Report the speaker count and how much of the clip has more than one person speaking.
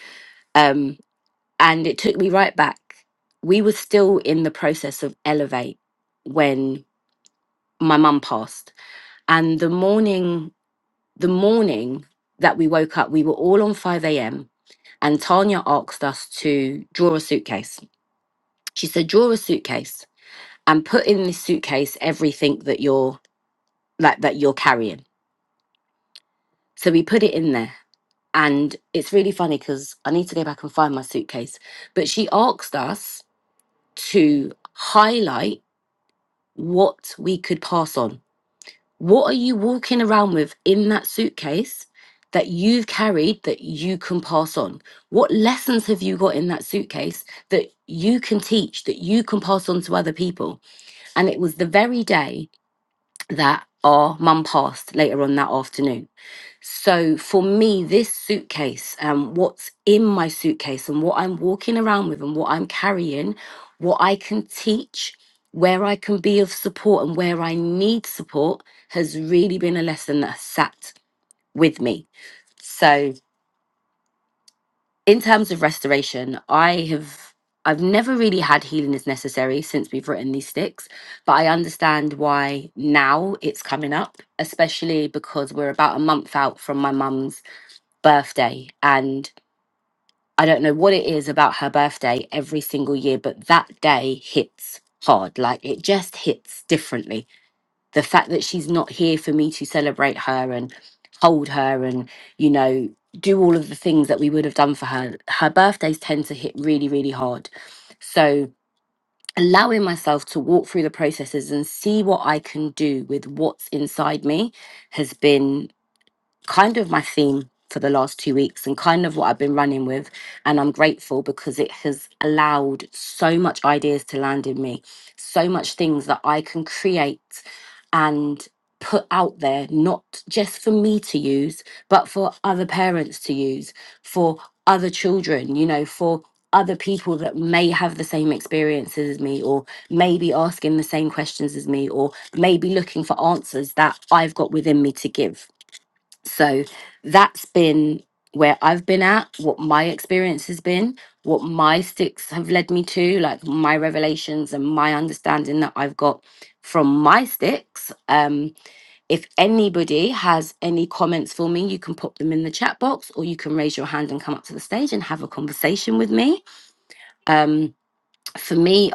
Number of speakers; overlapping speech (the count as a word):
one, no overlap